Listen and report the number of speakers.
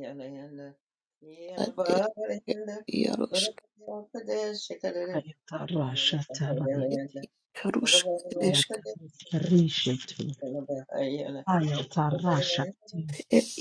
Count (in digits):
3